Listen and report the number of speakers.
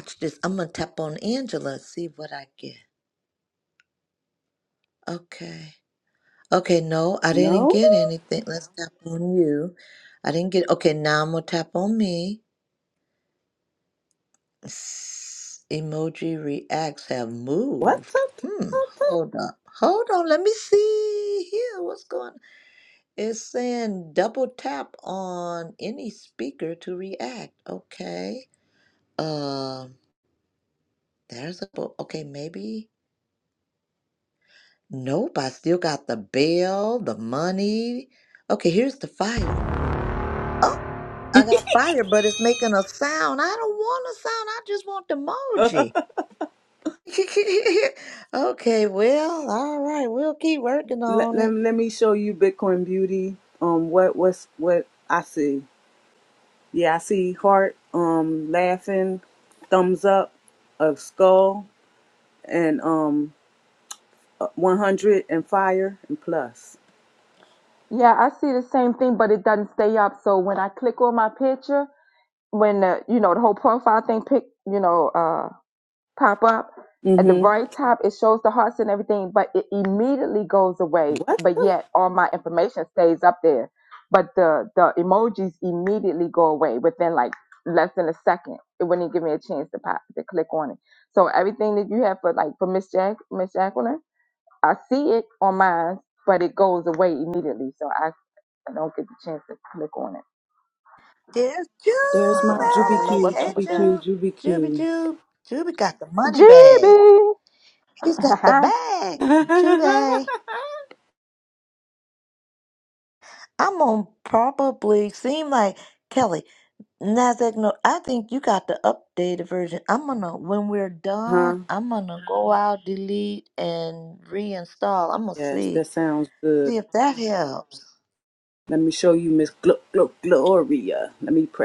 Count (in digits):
3